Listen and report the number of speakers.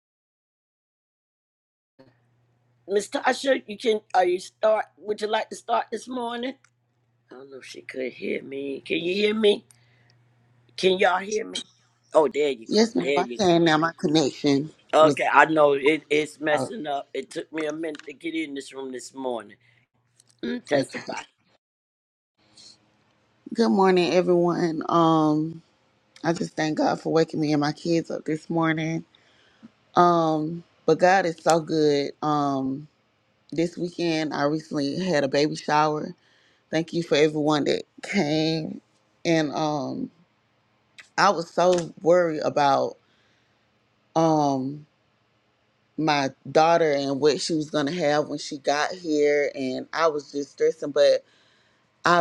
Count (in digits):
2